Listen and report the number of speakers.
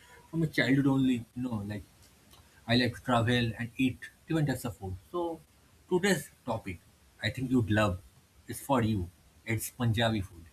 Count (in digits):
1